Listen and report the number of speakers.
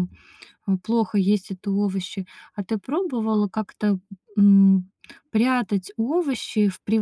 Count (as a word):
one